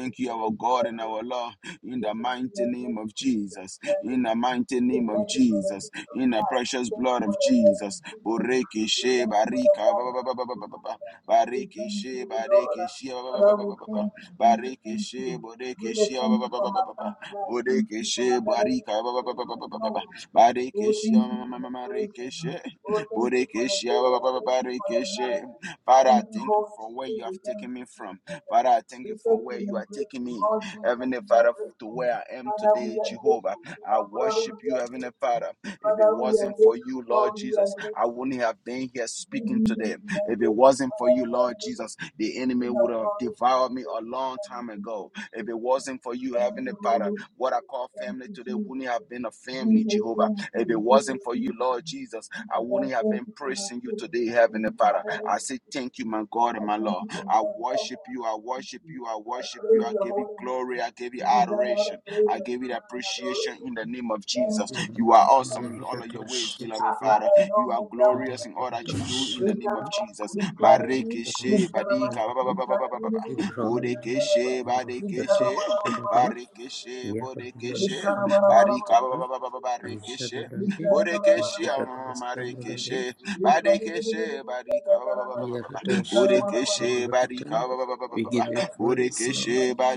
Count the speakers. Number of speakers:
three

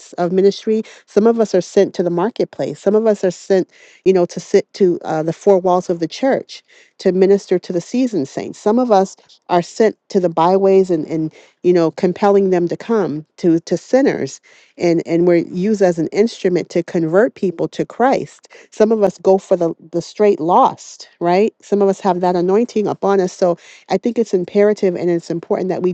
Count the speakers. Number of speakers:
one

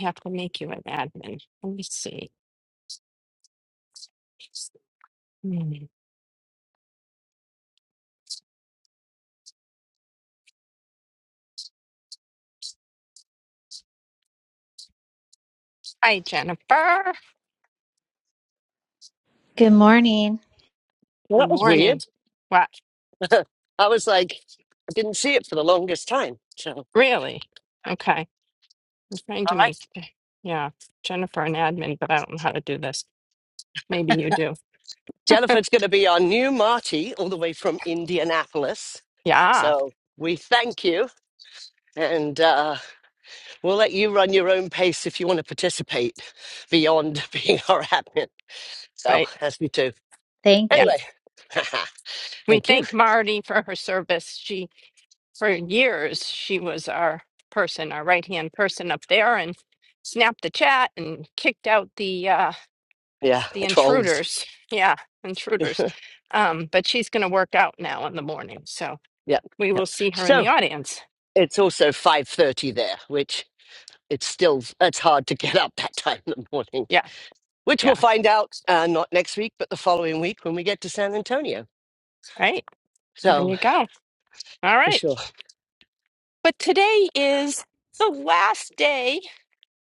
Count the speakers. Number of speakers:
three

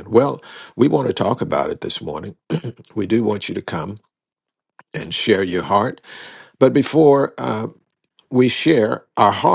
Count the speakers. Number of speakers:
one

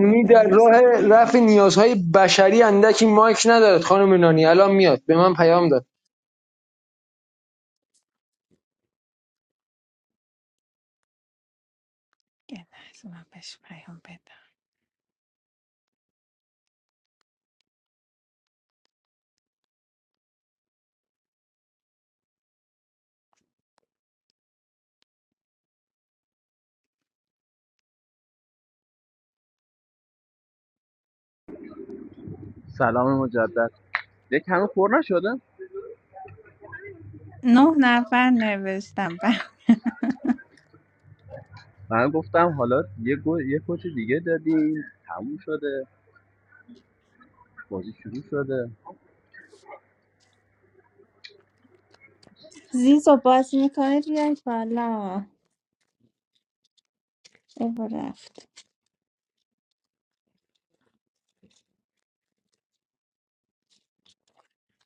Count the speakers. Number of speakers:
three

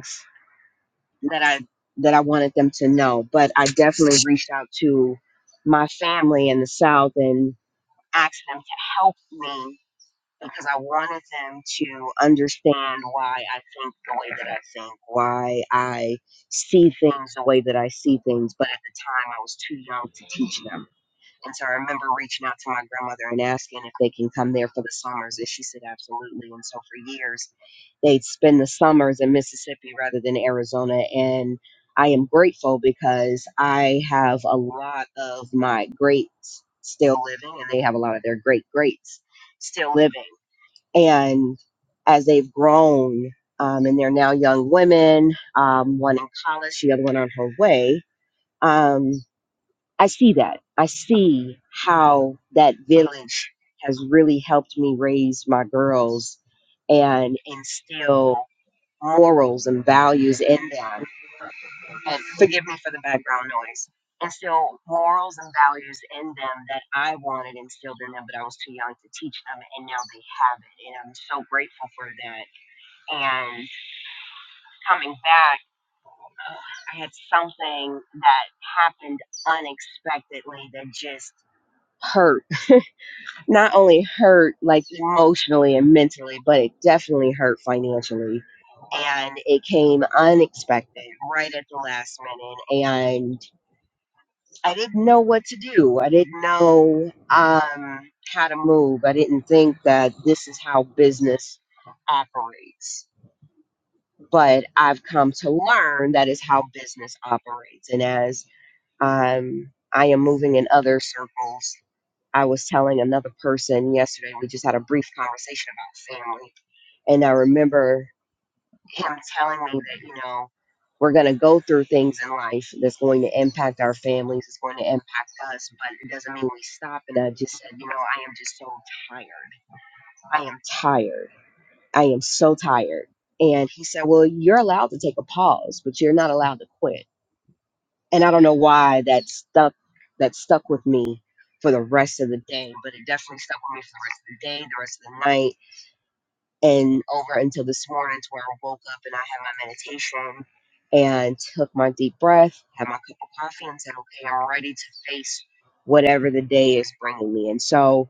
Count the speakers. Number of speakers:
one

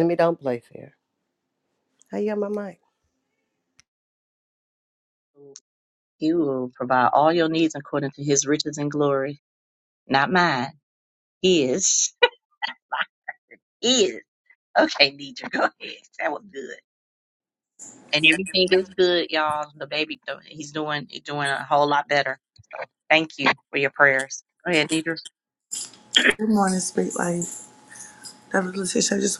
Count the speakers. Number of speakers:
three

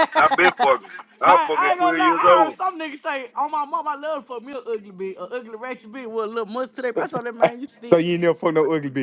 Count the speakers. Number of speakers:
three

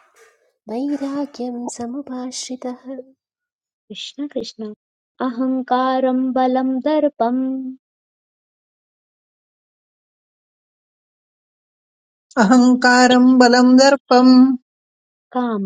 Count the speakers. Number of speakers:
three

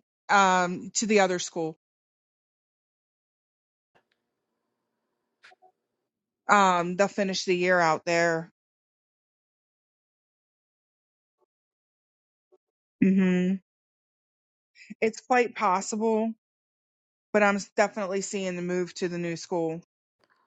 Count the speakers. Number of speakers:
one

